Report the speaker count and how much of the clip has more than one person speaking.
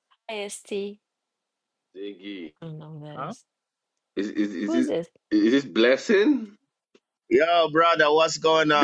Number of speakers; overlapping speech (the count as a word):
three, about 4%